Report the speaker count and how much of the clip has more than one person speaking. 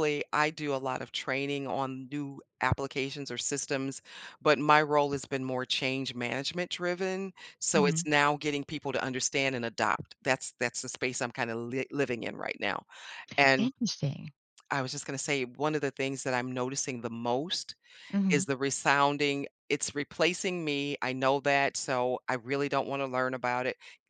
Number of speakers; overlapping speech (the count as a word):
two, about 2%